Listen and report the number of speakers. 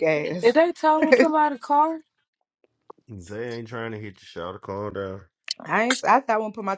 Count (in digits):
3